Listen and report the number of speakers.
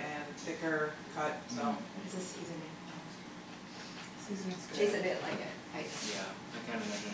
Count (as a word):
three